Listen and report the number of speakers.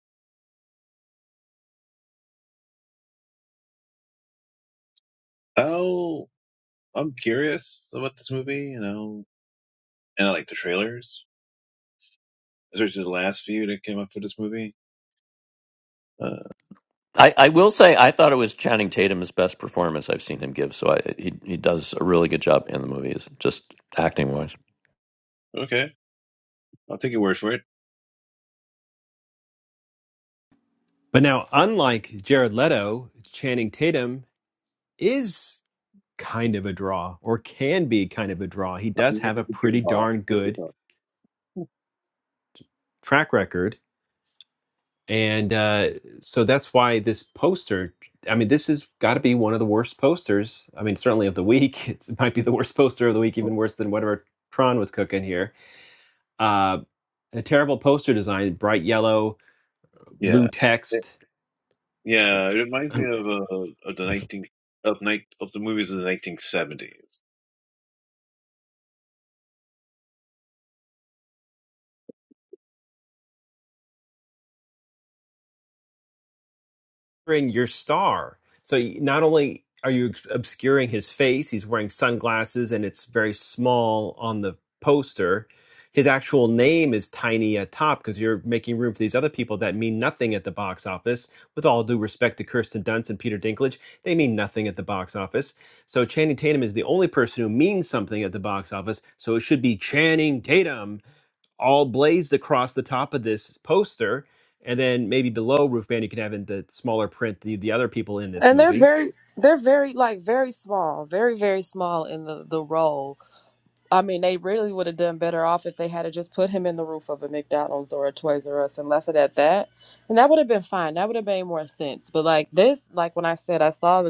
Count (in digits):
4